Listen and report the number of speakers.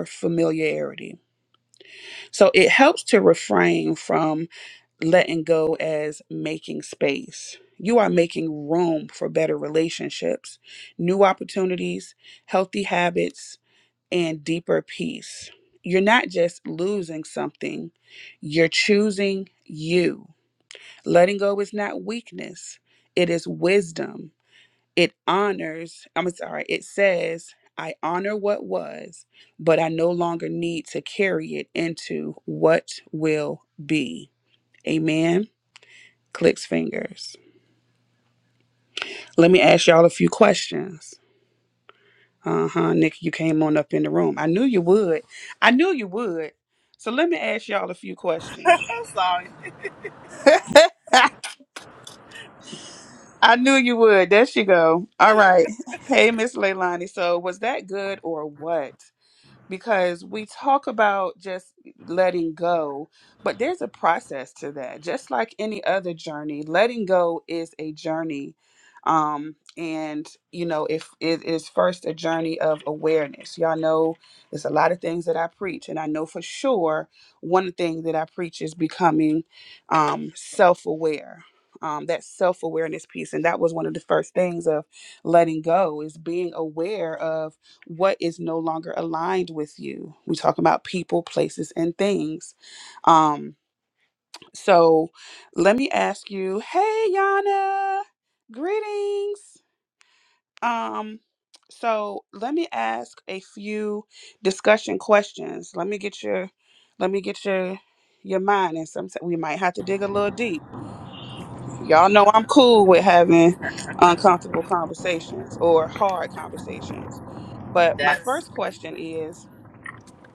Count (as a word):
two